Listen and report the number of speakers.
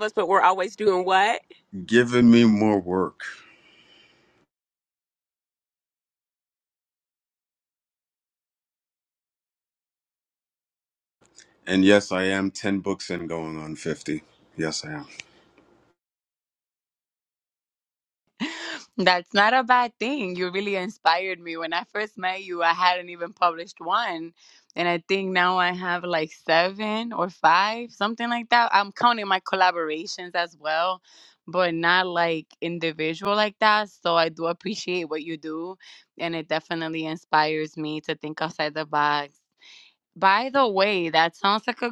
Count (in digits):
3